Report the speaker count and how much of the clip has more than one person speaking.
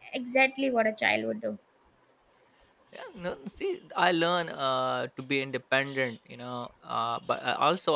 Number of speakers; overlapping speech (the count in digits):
2, no overlap